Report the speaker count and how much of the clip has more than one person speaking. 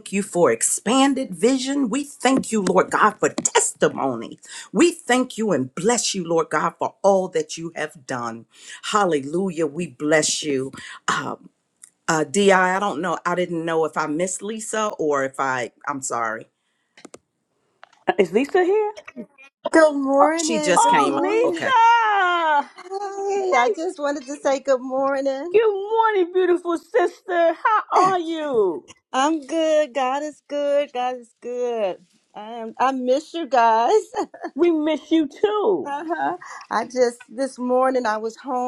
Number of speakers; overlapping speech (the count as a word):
three, about 5%